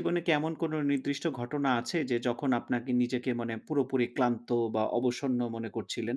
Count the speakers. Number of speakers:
1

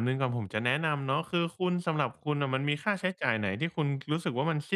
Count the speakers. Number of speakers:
1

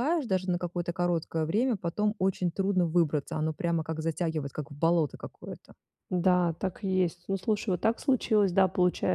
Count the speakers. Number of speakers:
2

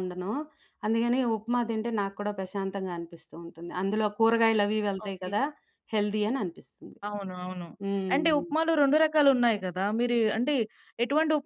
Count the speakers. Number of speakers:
2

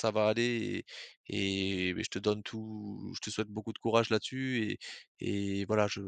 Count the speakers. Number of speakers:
1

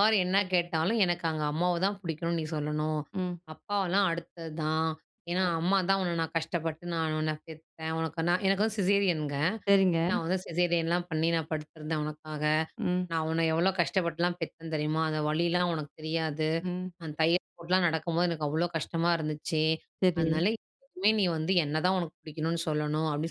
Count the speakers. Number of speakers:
2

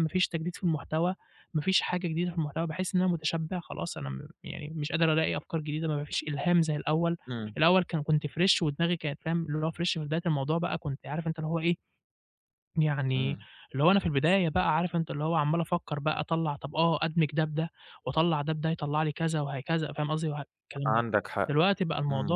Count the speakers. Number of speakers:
2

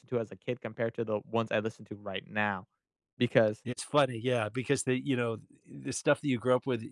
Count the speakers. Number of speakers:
2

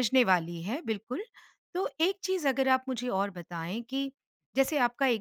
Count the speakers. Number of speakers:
1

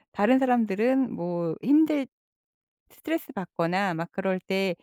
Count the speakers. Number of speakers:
1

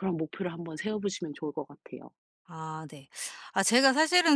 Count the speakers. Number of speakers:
2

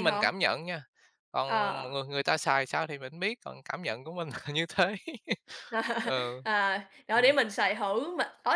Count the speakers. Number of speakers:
2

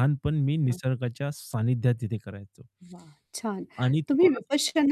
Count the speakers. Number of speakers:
2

